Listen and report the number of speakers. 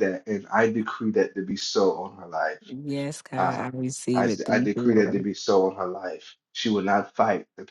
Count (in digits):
2